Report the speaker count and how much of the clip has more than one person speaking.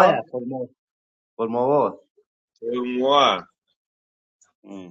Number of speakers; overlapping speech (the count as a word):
two, about 4%